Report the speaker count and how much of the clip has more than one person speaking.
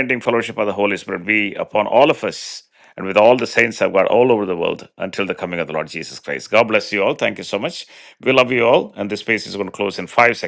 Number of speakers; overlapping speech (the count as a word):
one, no overlap